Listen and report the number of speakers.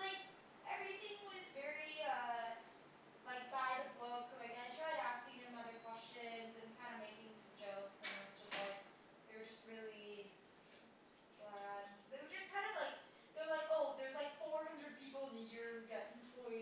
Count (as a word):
one